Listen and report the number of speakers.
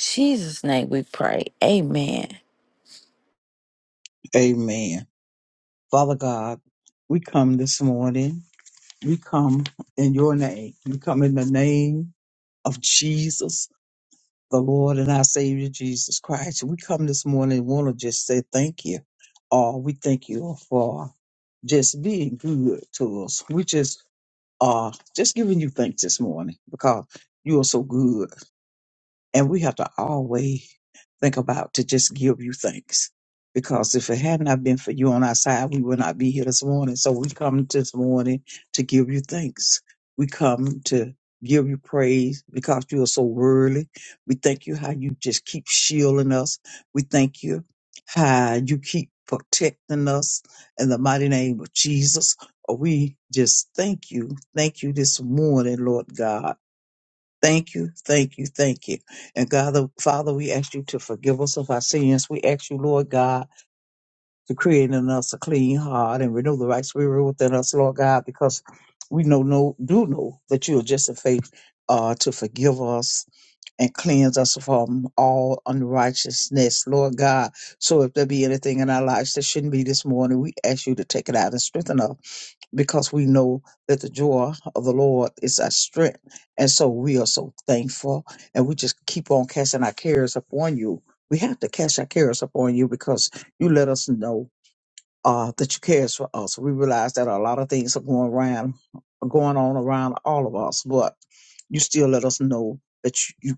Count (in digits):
2